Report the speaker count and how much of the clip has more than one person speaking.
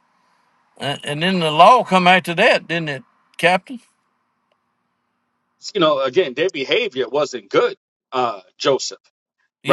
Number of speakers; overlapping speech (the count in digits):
2, about 1%